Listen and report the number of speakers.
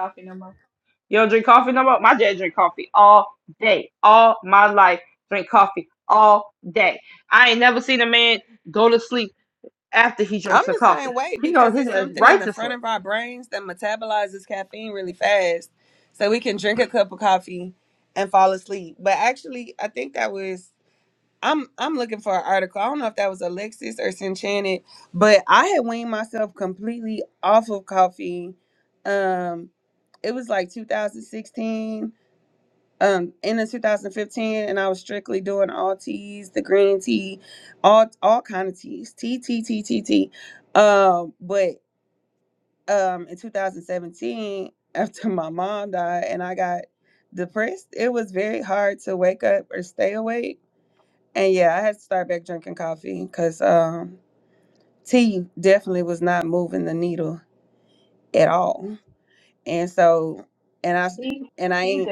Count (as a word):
three